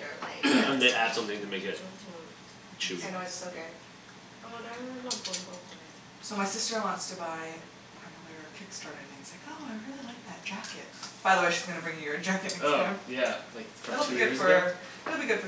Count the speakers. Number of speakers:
four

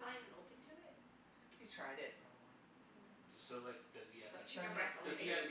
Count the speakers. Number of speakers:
three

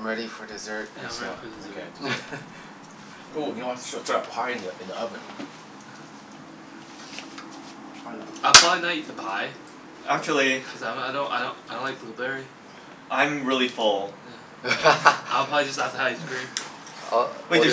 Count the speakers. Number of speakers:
four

